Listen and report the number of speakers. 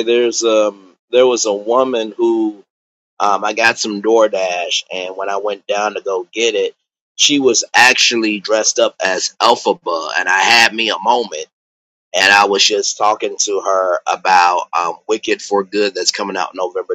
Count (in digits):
1